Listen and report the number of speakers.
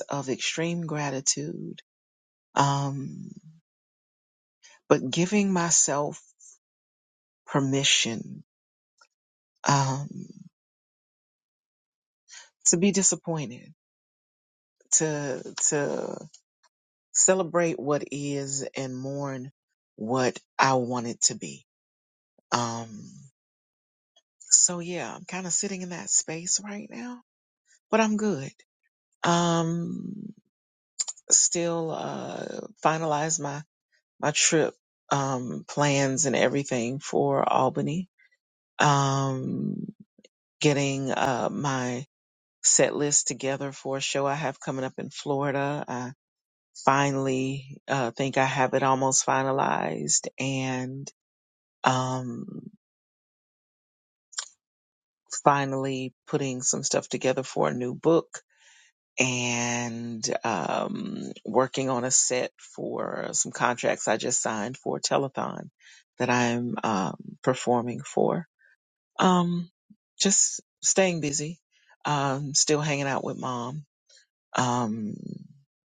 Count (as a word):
one